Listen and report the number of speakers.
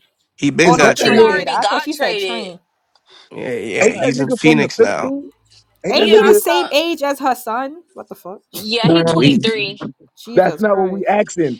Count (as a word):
four